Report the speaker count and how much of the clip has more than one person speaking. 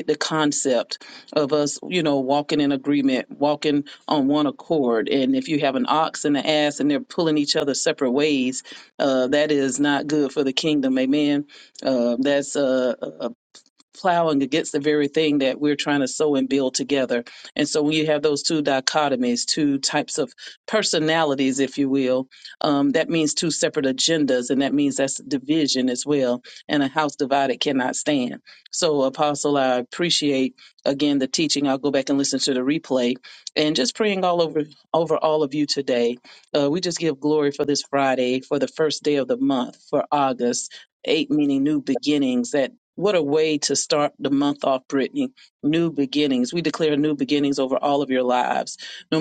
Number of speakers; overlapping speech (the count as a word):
one, no overlap